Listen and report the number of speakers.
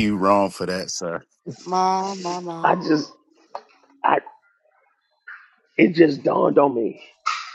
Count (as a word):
three